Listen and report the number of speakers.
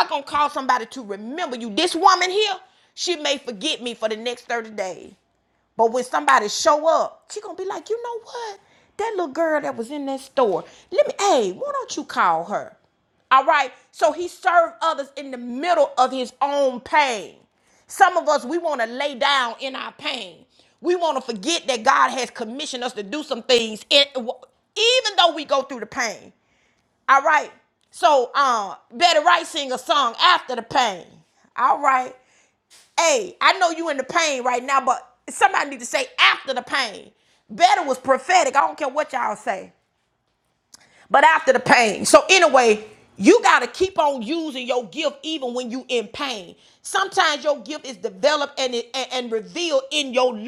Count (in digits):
1